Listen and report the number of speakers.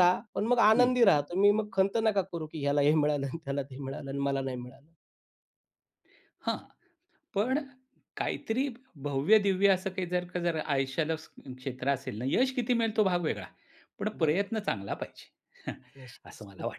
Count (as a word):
two